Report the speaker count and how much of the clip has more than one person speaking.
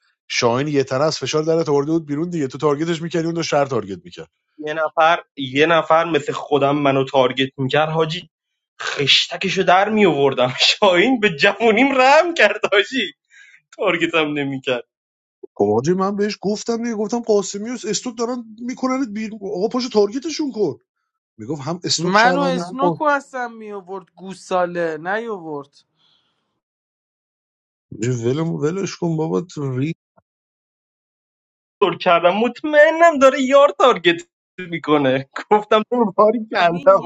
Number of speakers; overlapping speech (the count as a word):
three, about 4%